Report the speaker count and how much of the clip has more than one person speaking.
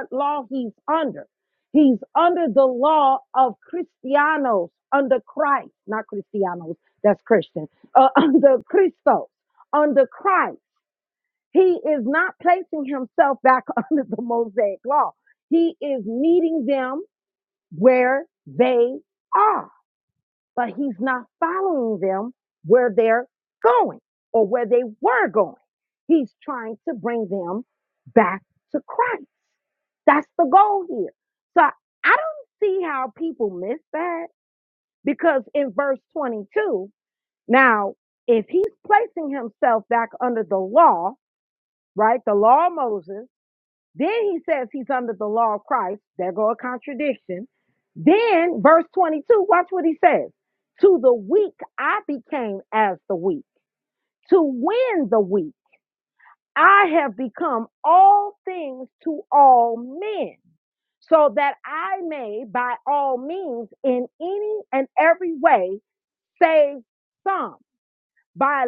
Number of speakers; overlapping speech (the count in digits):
1, no overlap